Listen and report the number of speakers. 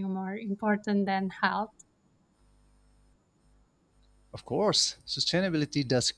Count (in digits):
2